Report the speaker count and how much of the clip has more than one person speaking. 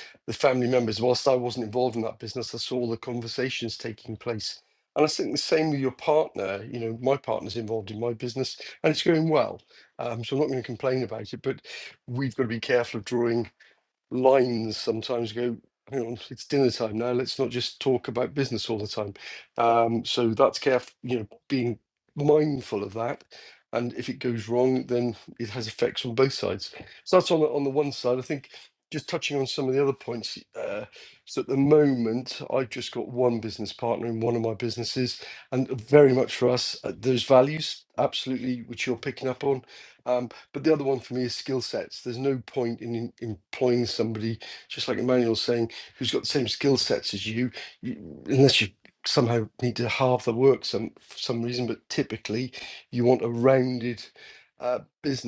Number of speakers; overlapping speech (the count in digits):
1, no overlap